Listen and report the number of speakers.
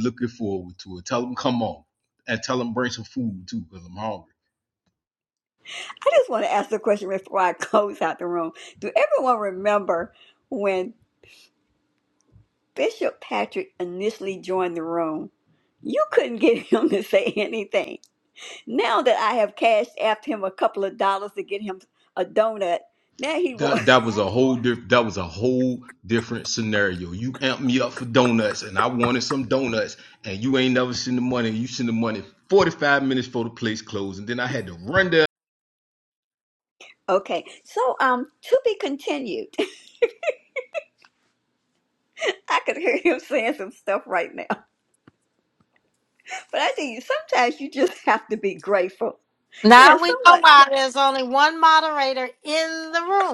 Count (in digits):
3